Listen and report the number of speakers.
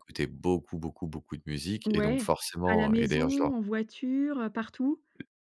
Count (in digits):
2